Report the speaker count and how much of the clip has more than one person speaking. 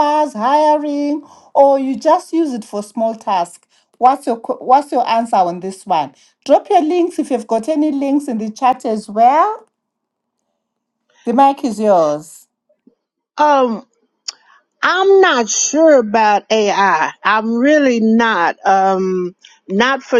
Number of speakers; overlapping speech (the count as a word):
two, no overlap